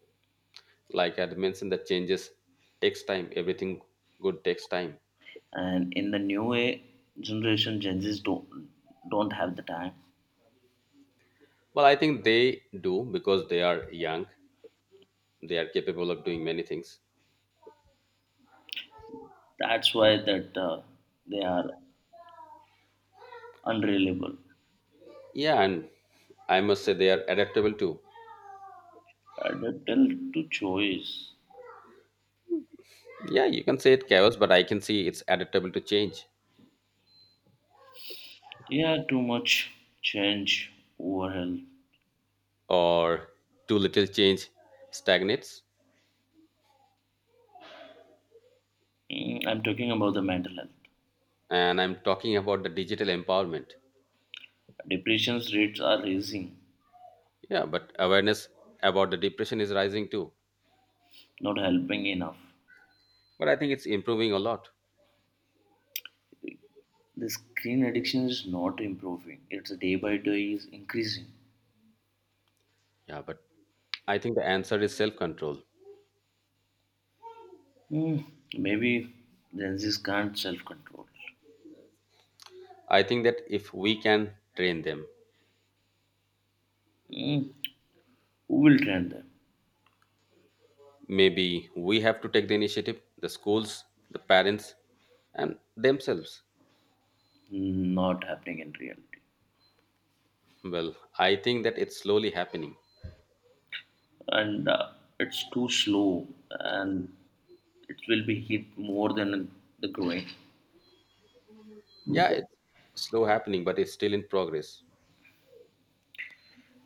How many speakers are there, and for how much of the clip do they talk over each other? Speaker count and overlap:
2, no overlap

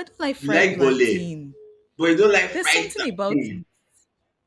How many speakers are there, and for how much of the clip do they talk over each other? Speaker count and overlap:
2, about 41%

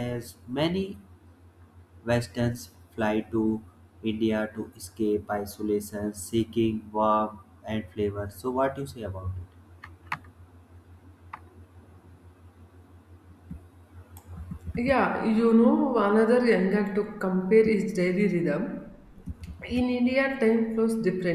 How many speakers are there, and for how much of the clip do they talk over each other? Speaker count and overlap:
2, no overlap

